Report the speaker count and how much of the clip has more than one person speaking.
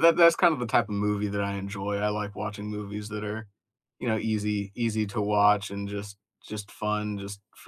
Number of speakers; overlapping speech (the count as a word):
one, no overlap